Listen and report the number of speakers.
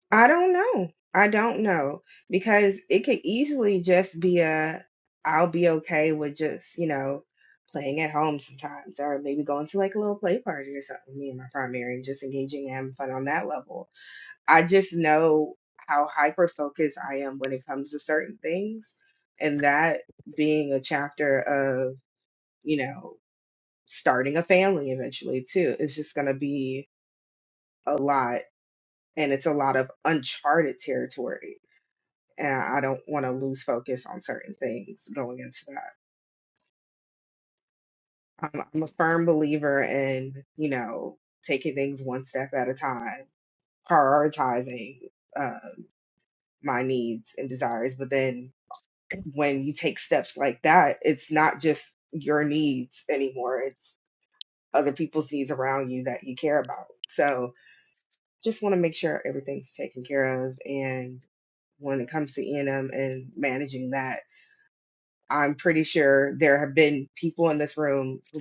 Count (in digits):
1